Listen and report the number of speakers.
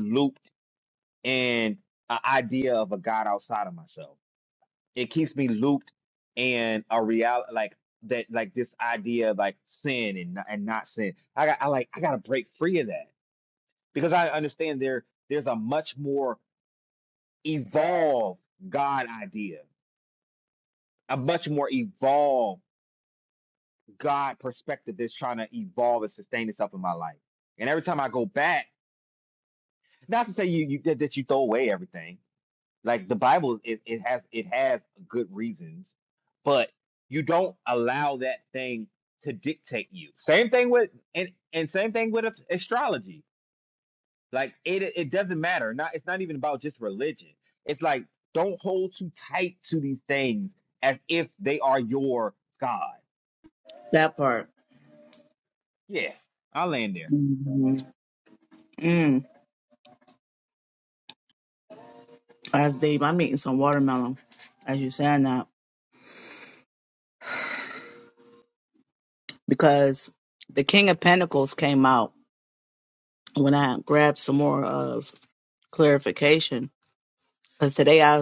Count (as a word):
two